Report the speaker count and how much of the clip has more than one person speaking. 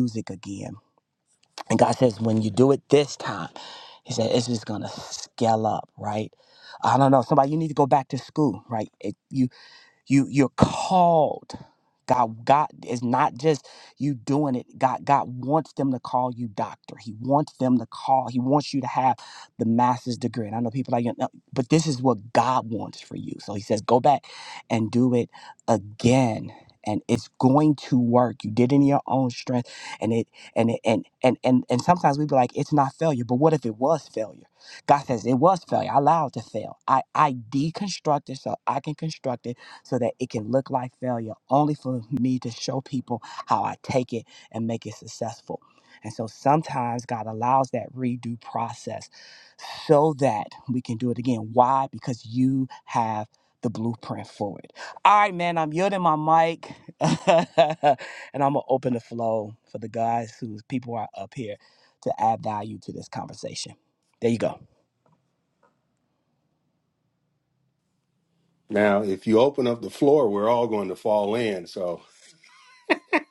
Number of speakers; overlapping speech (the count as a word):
two, no overlap